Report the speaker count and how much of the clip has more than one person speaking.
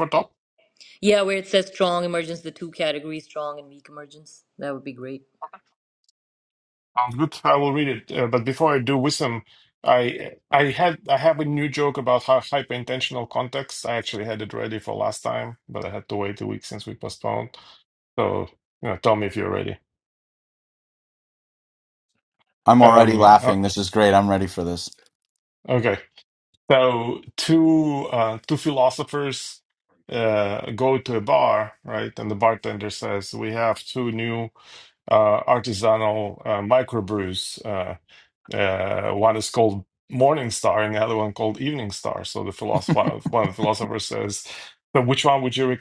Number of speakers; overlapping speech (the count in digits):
3, about 2%